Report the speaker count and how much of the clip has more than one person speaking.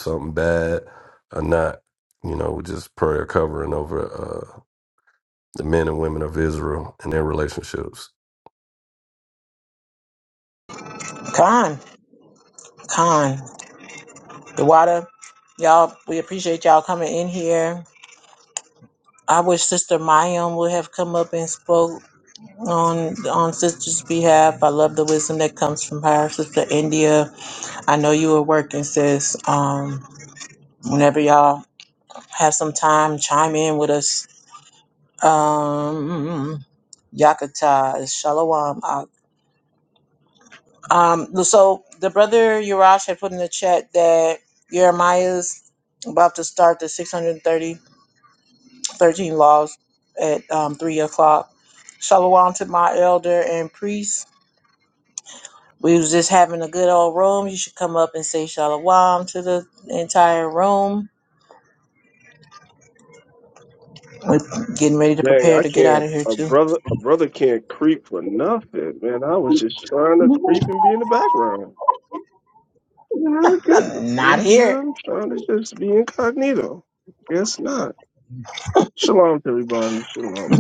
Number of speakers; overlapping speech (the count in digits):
3, about 2%